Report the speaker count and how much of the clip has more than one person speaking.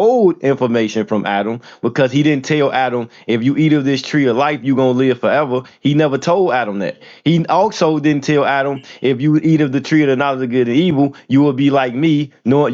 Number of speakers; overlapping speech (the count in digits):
1, no overlap